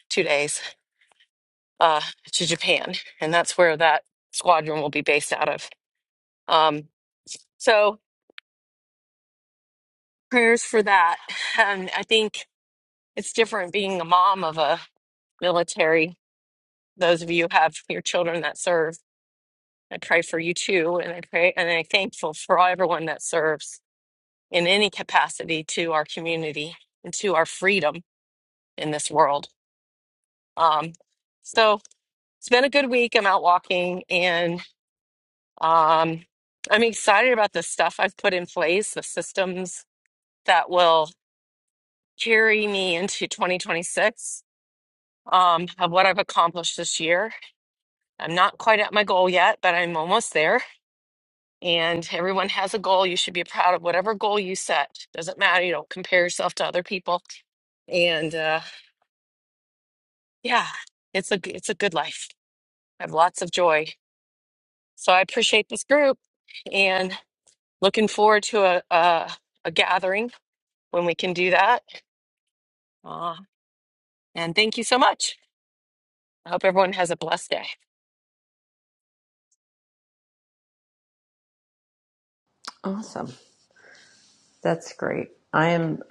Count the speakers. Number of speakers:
2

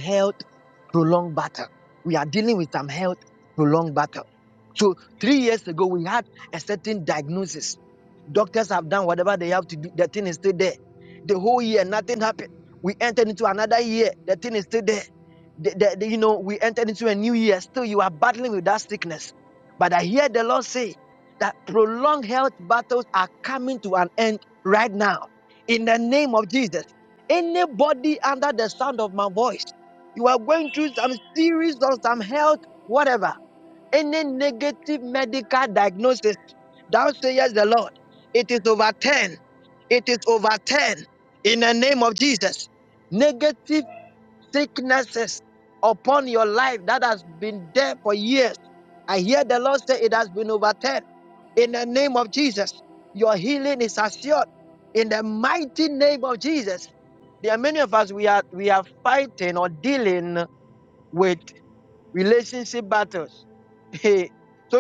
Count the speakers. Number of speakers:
1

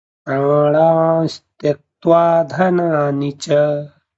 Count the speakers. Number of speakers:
1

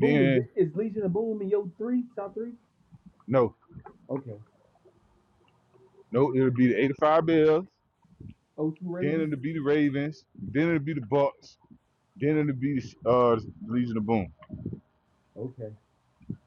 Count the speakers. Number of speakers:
2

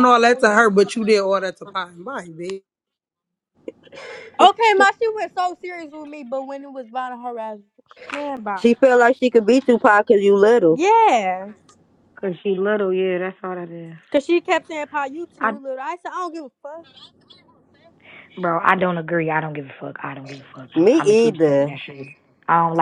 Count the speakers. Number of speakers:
4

